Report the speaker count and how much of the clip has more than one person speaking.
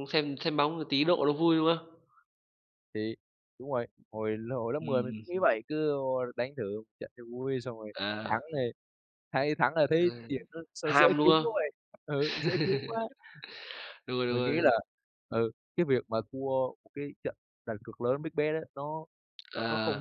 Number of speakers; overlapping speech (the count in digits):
2, about 10%